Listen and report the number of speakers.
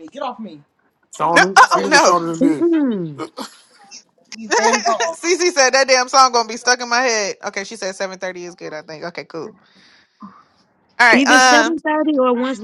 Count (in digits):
4